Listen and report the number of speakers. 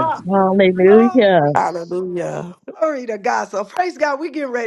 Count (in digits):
3